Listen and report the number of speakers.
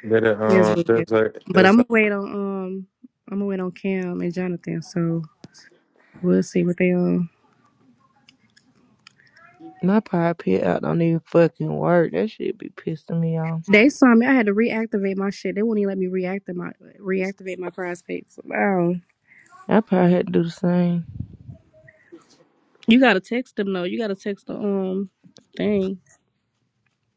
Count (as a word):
three